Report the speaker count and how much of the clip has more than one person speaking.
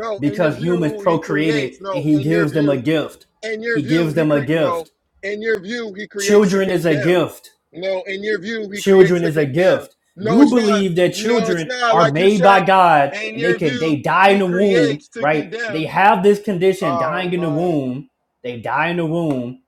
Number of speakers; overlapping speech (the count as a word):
two, about 62%